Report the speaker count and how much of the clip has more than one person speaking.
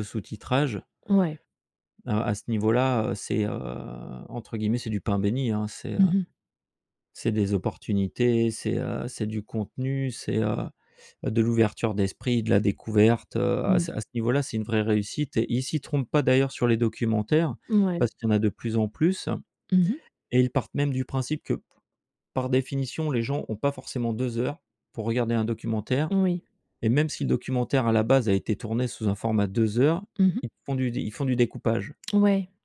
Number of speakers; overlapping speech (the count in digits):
2, about 1%